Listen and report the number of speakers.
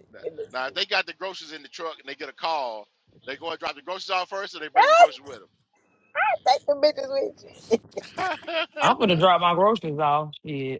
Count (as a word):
three